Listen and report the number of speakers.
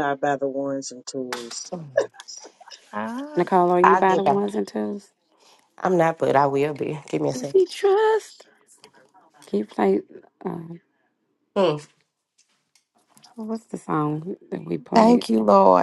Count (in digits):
4